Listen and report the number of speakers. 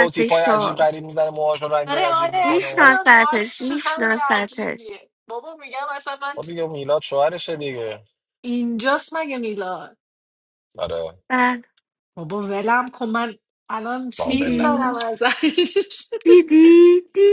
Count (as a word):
three